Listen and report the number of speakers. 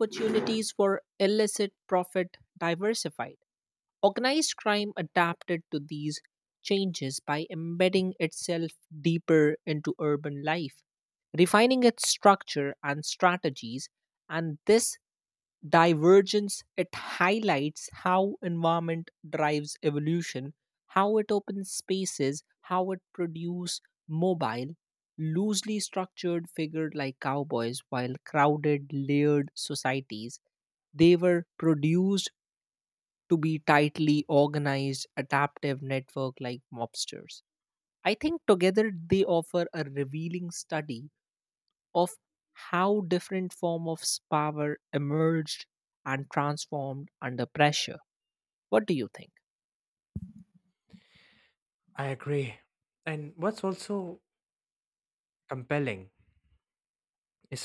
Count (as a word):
two